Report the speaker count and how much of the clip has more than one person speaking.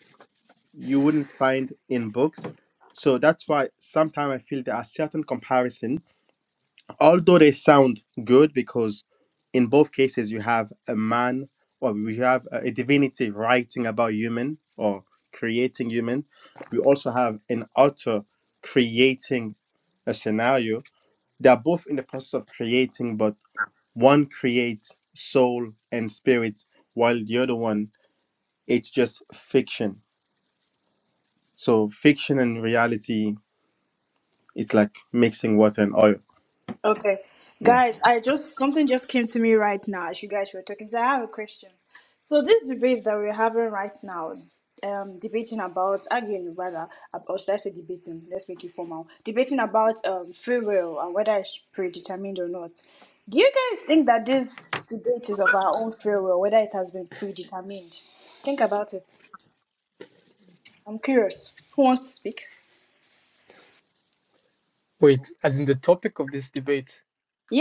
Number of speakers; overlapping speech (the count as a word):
three, under 1%